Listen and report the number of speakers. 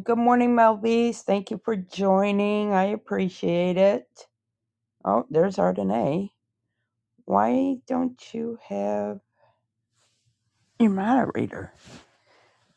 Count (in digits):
1